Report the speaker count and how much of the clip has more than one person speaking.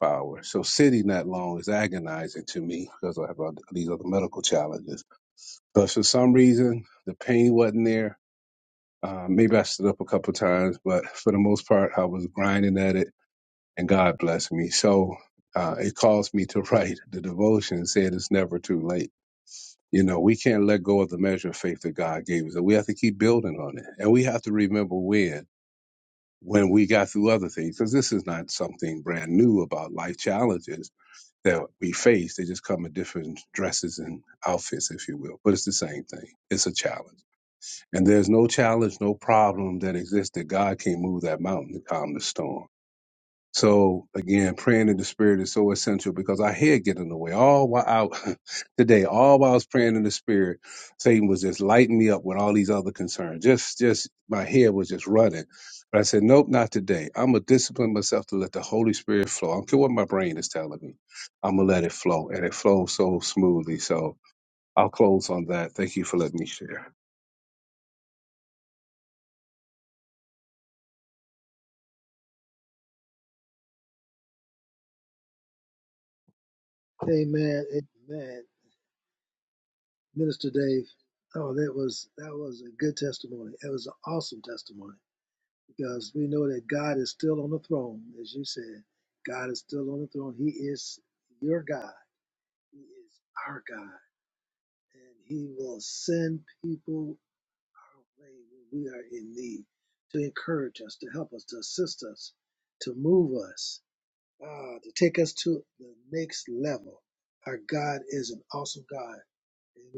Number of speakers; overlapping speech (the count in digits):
2, no overlap